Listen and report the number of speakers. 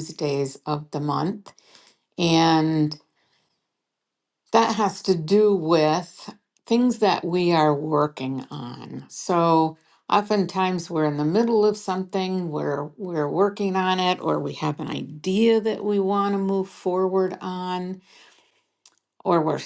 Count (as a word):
one